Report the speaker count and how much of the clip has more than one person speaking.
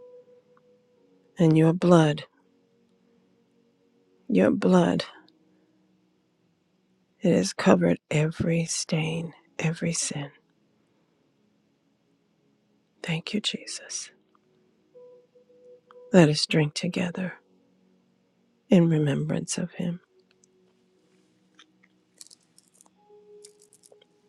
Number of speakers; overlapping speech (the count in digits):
1, no overlap